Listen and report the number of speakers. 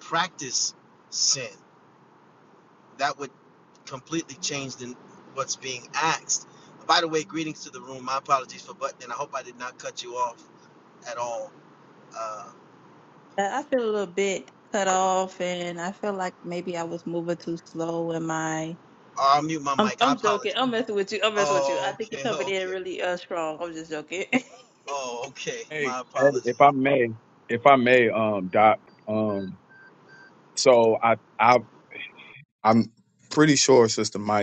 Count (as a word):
three